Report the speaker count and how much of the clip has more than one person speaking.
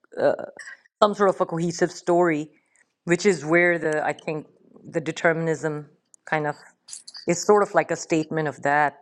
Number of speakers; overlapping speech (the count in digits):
1, no overlap